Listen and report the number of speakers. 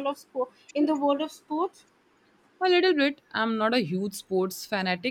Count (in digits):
2